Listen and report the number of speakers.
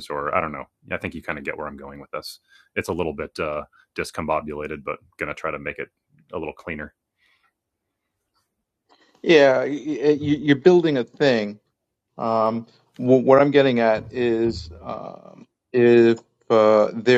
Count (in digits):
2